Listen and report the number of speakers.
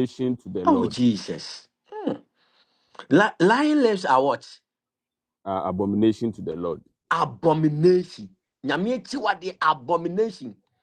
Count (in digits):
2